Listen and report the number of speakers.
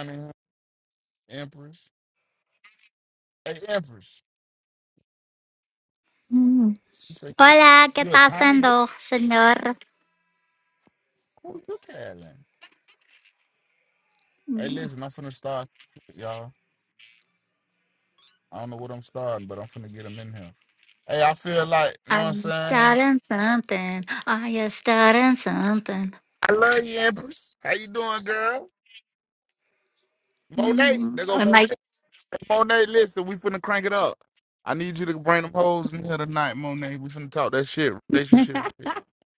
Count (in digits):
2